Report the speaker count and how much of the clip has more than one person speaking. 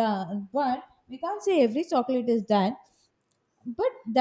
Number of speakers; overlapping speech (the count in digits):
1, no overlap